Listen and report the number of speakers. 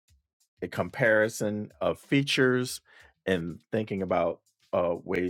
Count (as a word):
one